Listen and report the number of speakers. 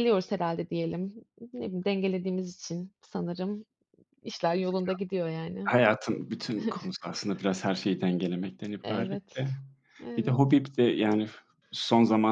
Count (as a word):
two